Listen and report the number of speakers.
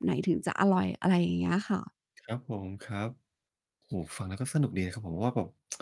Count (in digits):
2